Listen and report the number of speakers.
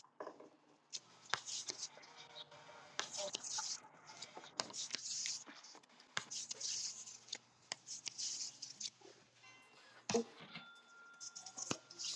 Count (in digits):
0